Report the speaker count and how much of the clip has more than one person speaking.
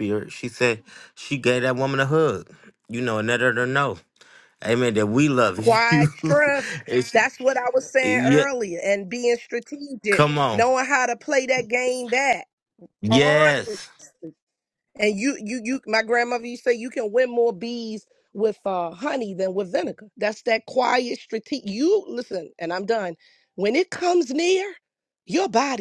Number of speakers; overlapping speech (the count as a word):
two, about 8%